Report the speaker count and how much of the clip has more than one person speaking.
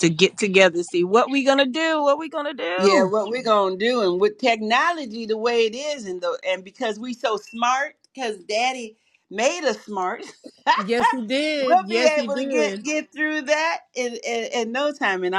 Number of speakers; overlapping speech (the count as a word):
two, about 10%